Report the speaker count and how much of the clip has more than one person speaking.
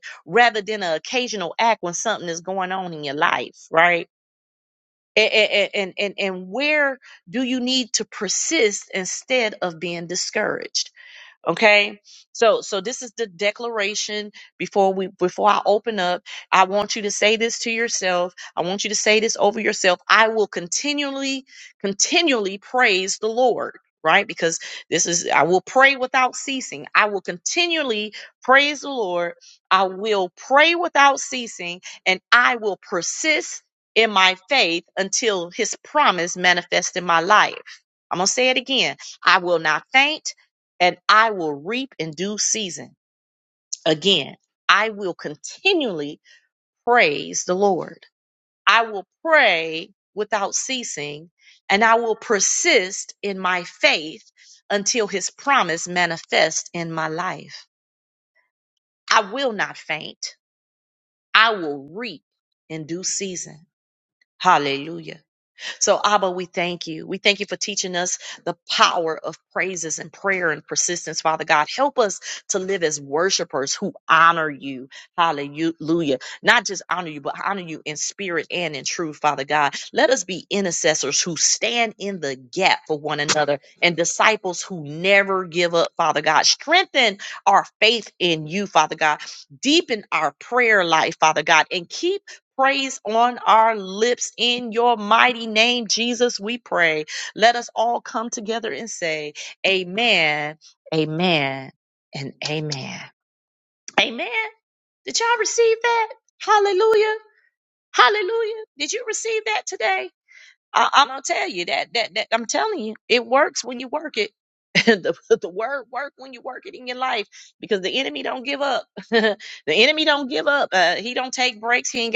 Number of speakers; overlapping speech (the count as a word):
one, no overlap